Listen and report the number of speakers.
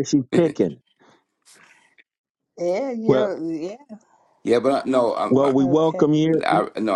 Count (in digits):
3